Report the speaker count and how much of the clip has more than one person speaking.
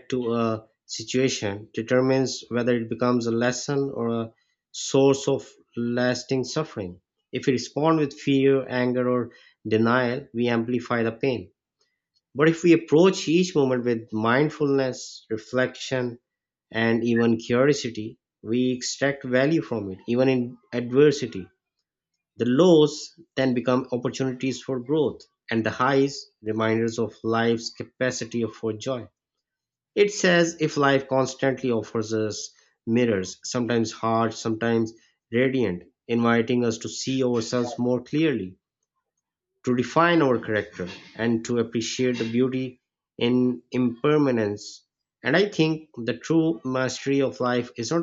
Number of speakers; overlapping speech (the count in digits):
1, no overlap